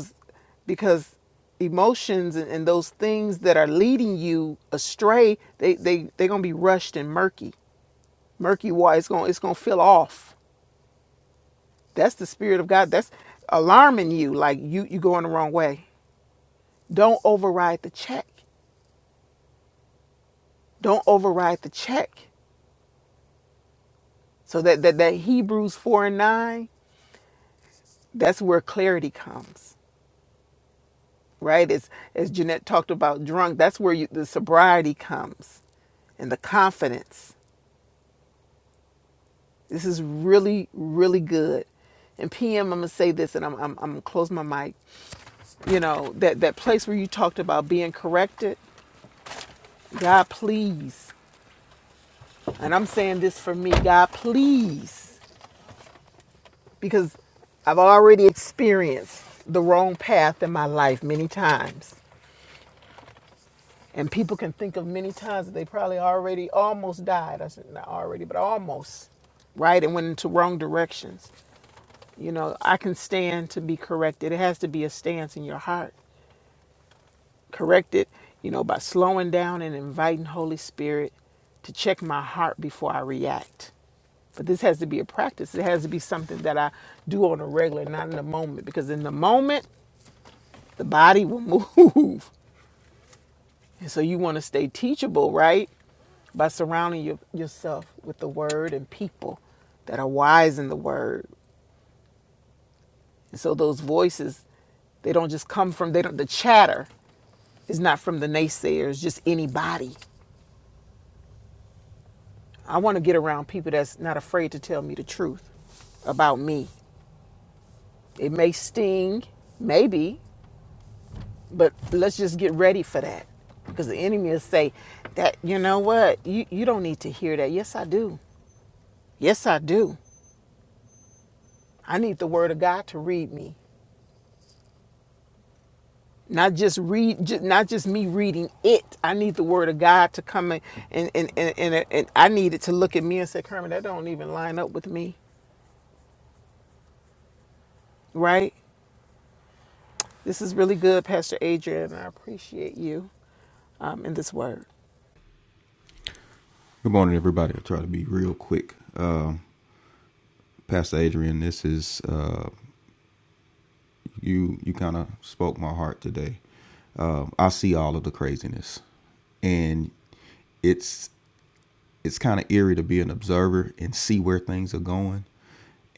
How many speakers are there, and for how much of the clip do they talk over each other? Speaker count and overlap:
2, no overlap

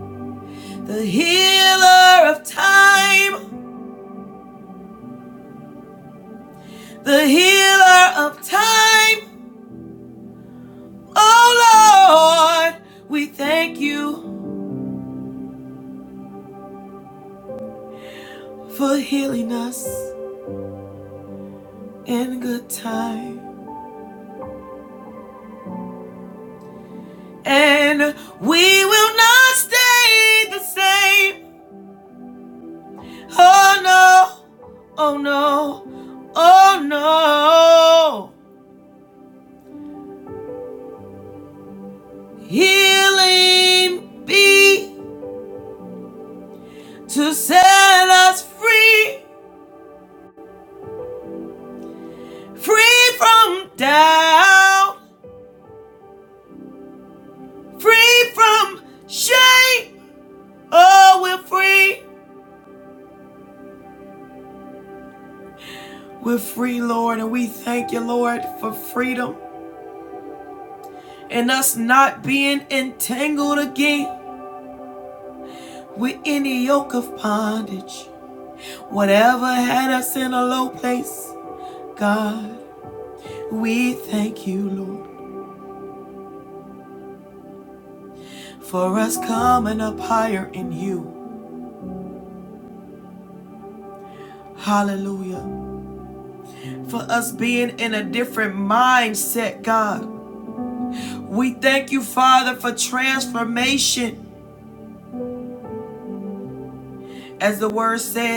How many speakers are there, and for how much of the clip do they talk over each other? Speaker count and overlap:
1, no overlap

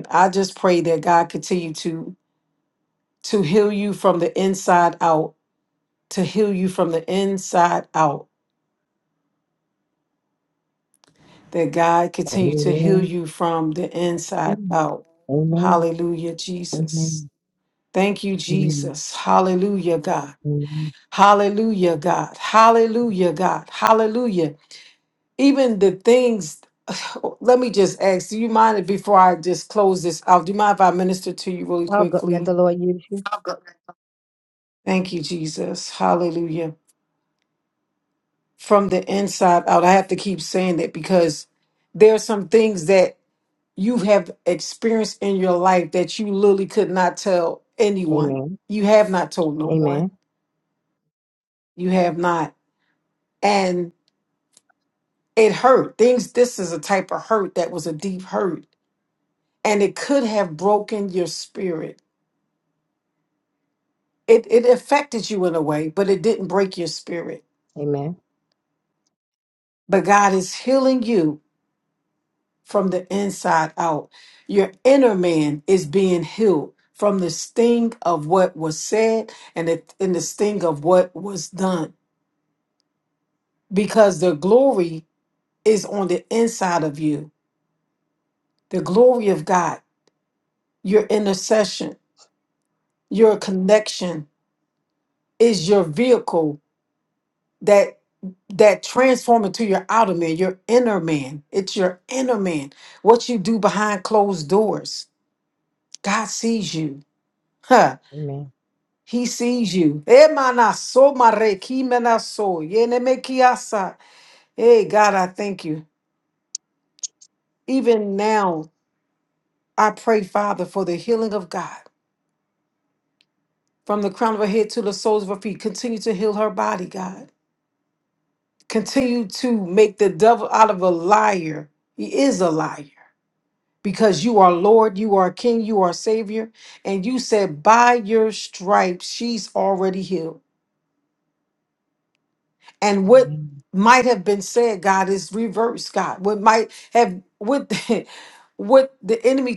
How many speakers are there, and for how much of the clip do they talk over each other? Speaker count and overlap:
2, about 2%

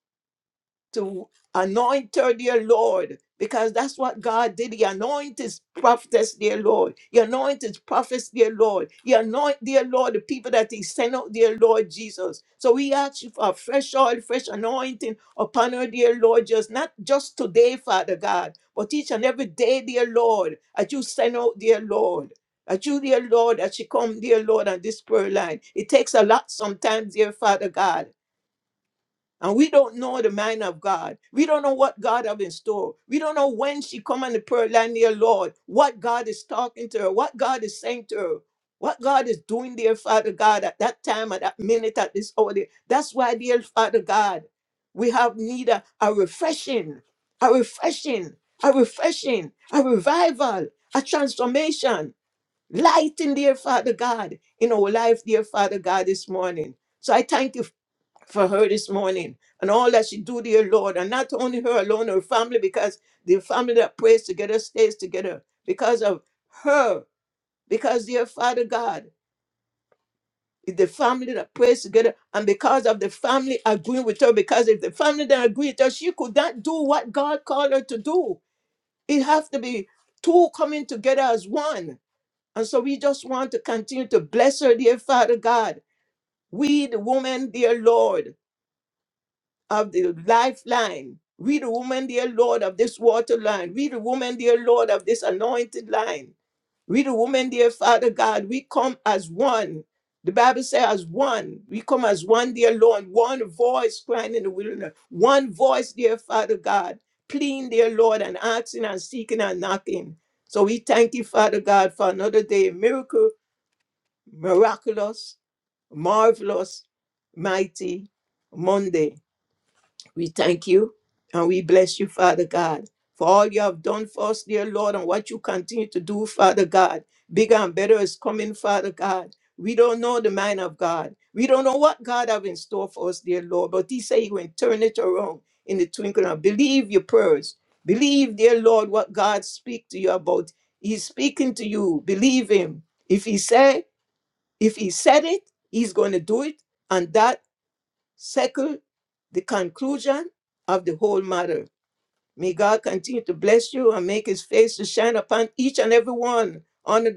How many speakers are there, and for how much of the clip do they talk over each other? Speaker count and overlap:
1, no overlap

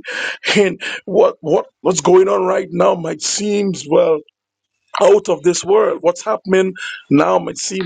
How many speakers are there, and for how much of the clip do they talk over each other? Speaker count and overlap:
1, no overlap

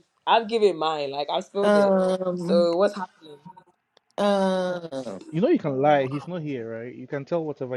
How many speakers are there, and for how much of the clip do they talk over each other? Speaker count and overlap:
3, about 6%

